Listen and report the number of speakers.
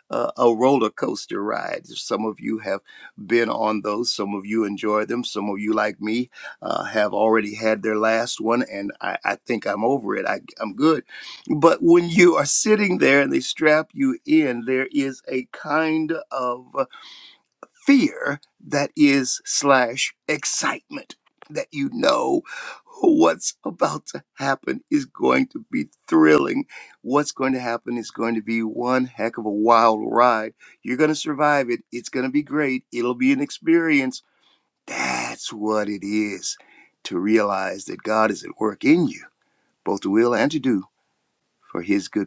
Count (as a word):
one